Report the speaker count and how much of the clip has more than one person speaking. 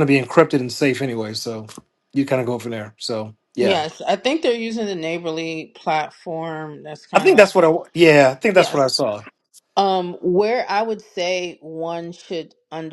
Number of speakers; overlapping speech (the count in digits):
2, about 7%